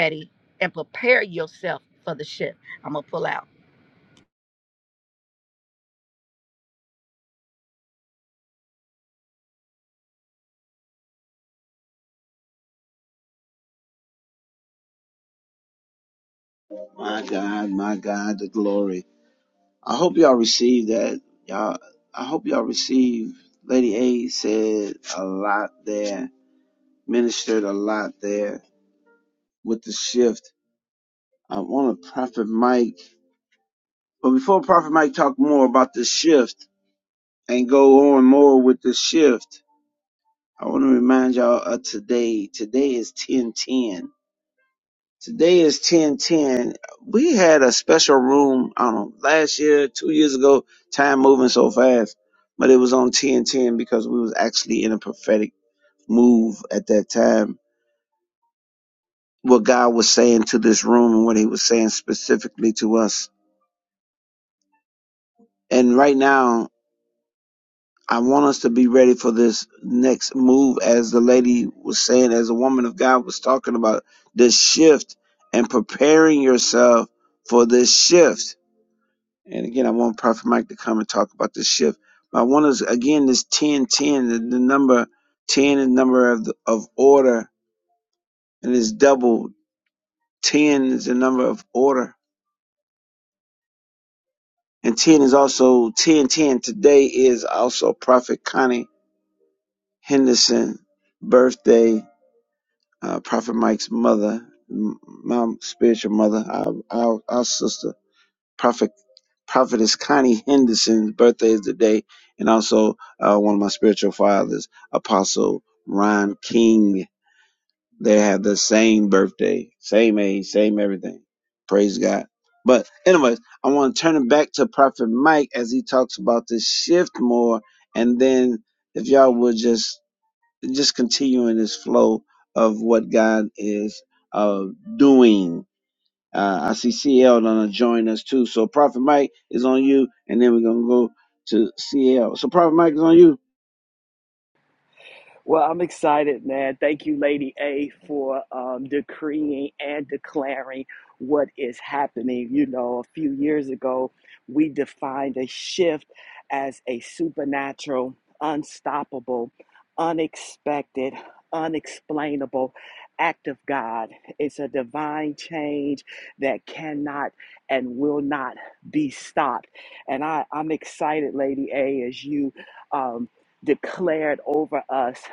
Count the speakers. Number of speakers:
three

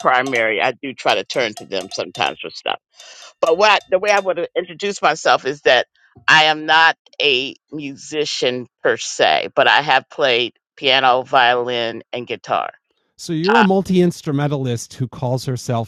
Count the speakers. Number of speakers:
two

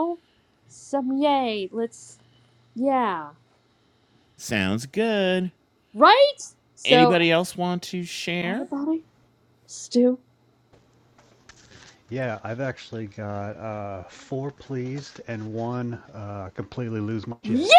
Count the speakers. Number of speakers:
three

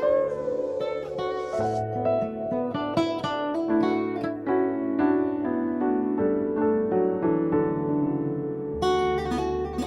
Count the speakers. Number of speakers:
zero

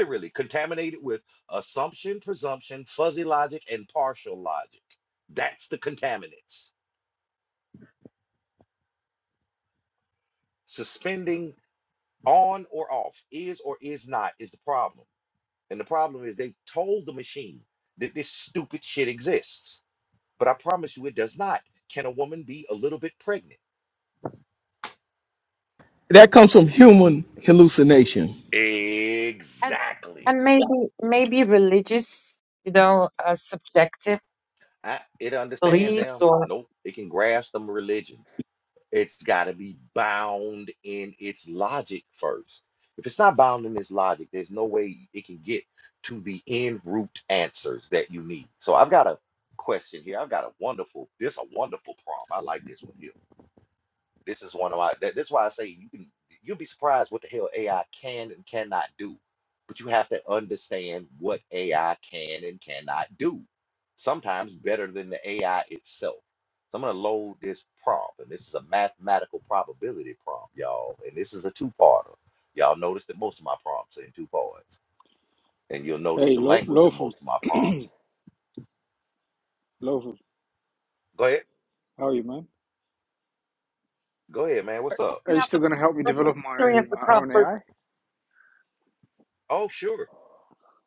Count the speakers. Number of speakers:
four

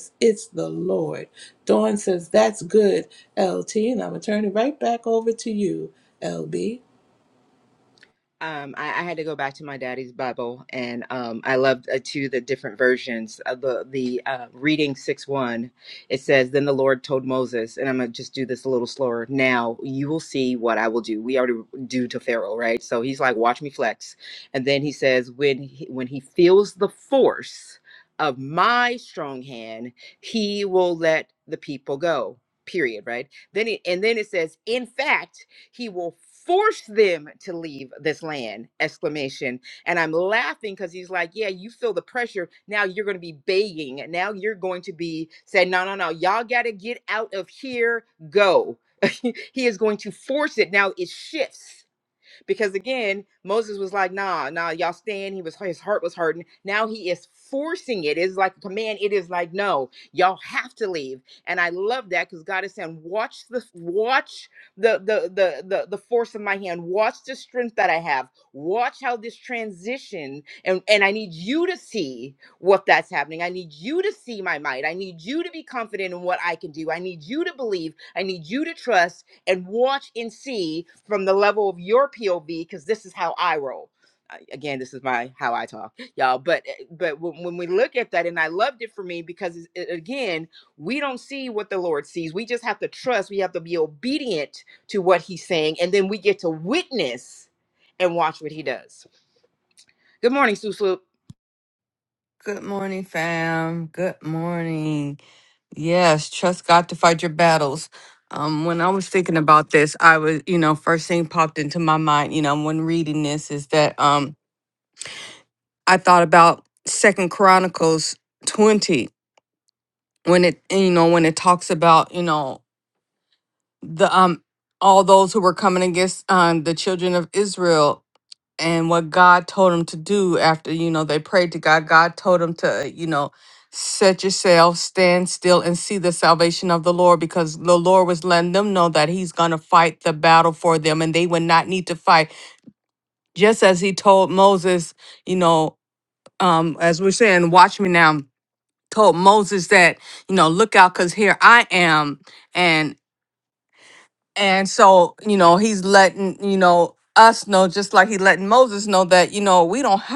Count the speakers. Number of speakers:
three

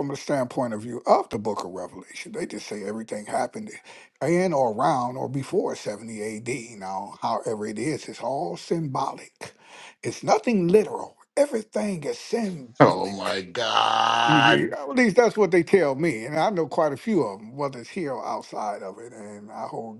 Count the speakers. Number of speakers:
two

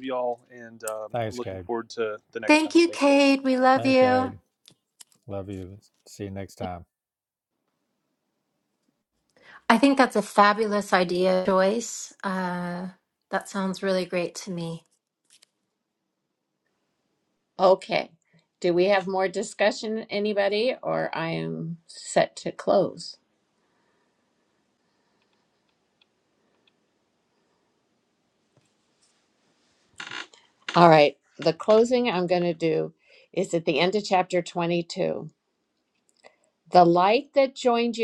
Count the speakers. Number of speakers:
four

